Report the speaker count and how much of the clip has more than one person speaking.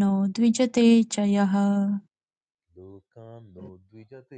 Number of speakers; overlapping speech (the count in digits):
2, no overlap